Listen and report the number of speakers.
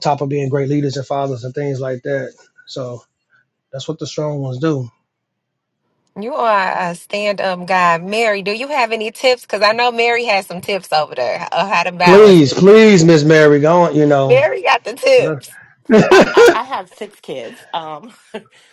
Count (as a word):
three